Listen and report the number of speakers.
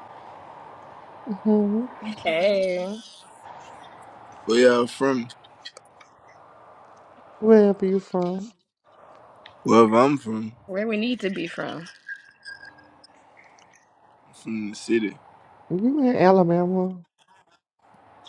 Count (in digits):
3